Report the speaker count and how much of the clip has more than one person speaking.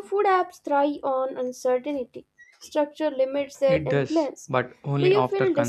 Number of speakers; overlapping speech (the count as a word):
two, about 24%